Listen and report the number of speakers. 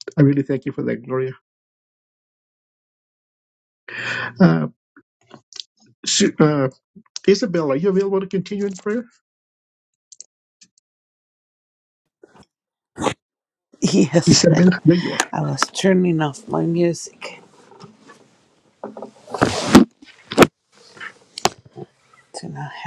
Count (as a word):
two